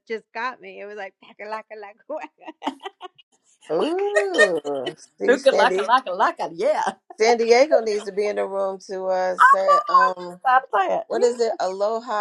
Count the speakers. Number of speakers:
3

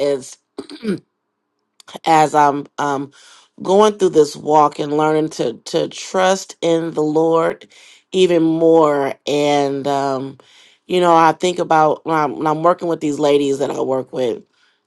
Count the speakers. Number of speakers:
1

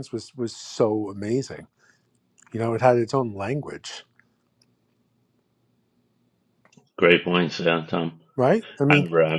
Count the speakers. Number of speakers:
2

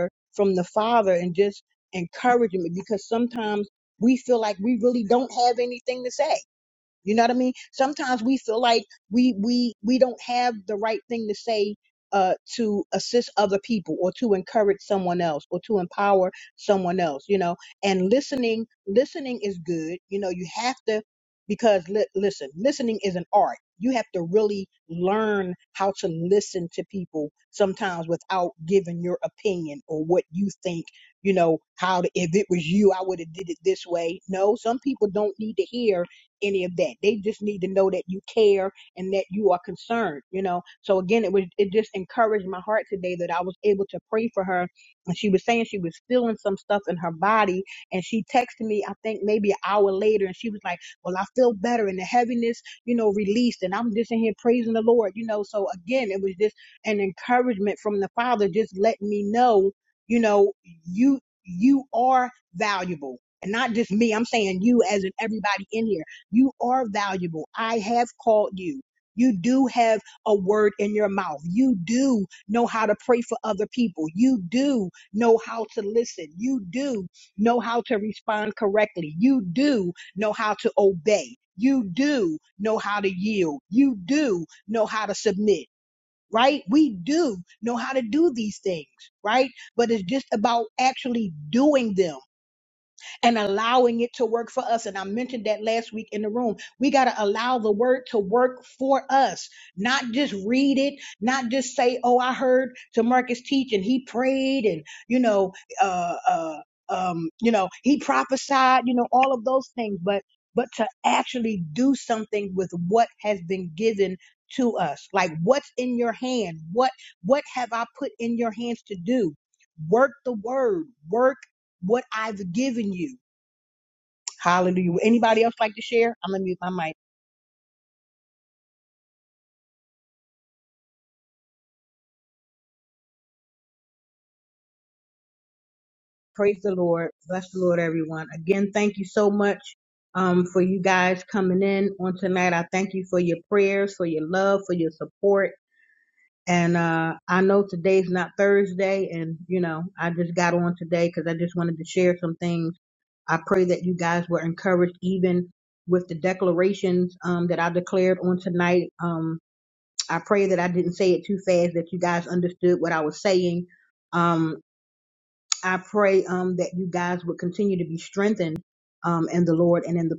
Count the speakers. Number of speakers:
1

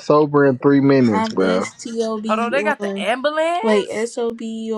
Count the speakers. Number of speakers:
3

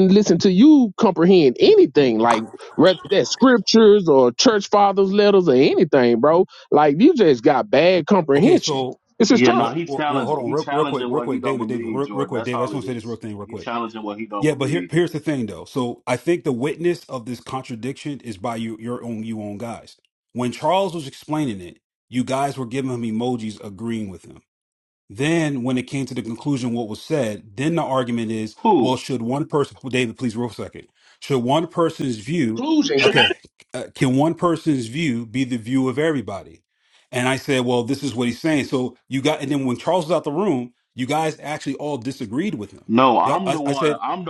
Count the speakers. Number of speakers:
3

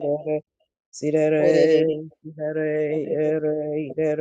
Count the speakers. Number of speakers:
2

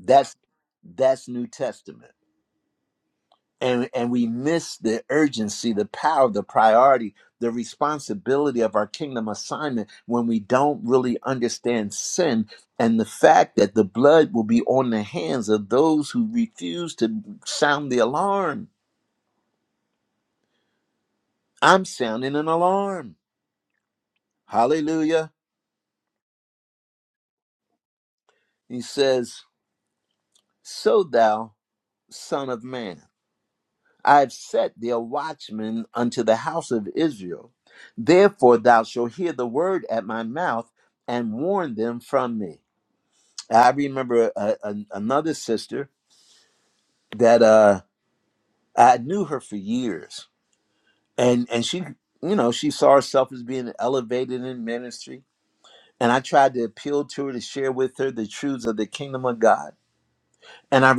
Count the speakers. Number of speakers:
1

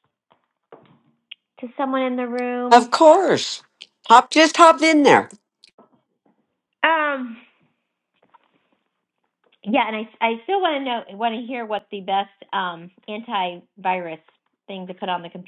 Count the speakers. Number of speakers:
2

